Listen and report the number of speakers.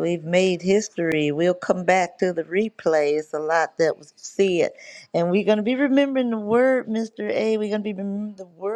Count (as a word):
one